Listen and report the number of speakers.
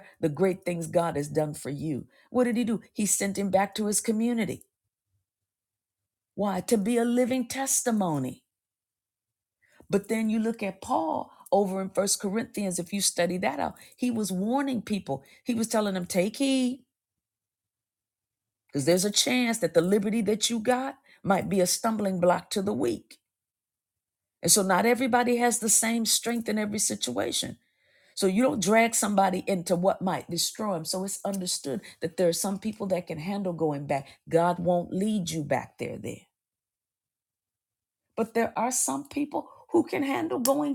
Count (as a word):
one